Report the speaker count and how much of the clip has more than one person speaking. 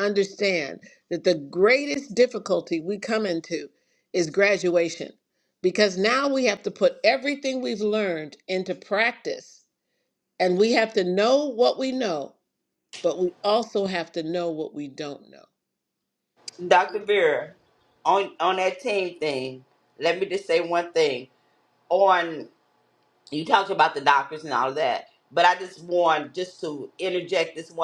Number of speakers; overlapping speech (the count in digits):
2, no overlap